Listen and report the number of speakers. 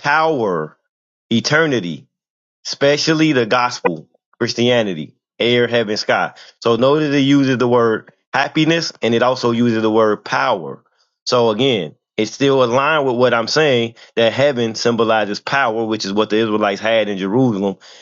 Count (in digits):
1